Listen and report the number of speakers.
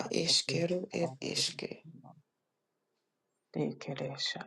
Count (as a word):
two